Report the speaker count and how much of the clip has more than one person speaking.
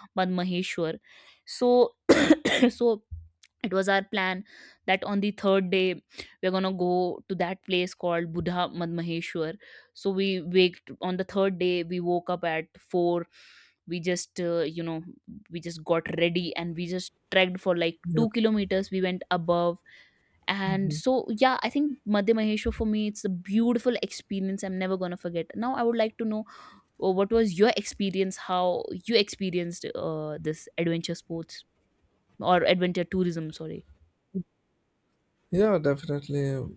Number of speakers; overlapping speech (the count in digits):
2, about 1%